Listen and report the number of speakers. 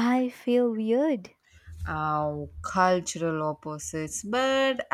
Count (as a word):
two